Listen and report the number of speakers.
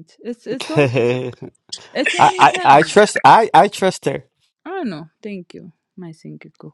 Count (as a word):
two